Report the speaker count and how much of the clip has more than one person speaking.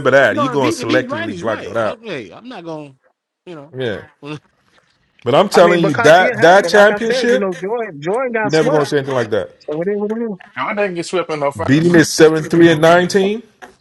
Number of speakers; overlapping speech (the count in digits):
4, about 32%